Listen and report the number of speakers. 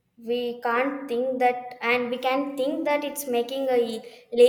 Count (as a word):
one